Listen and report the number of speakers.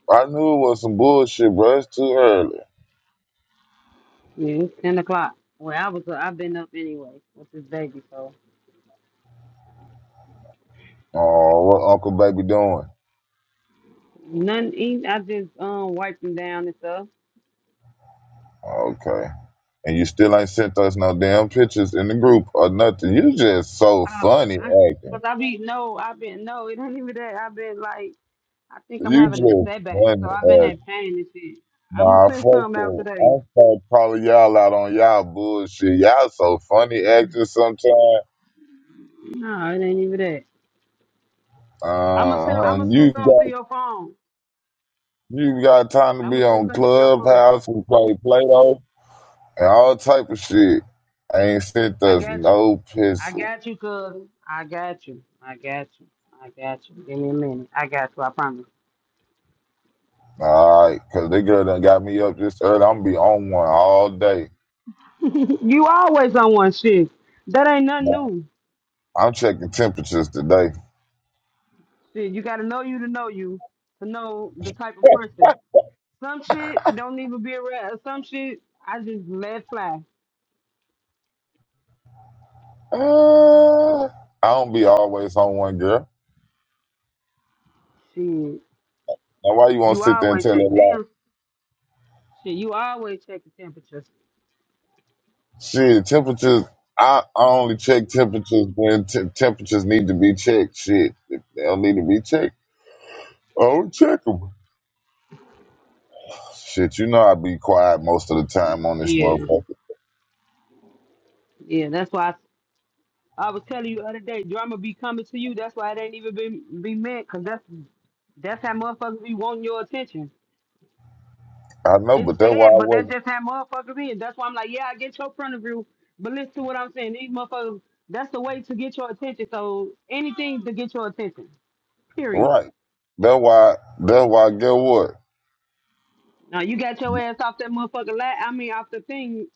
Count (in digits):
2